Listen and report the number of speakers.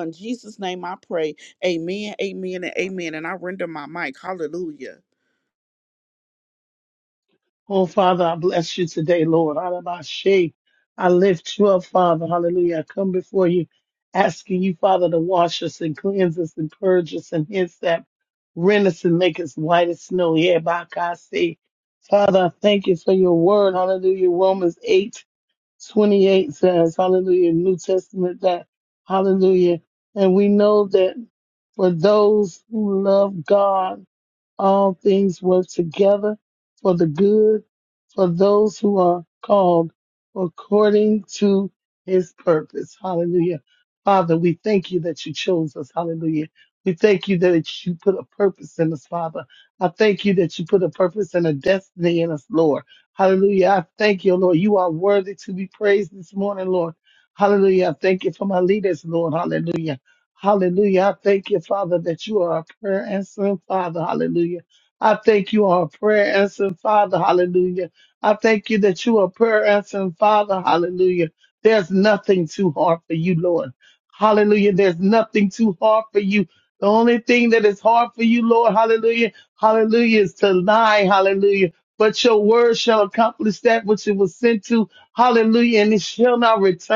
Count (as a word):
two